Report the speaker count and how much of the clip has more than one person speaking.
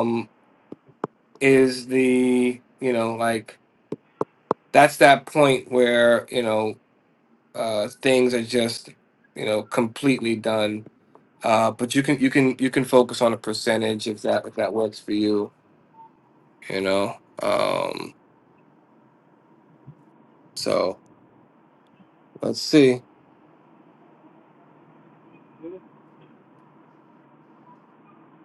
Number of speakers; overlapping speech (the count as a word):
one, no overlap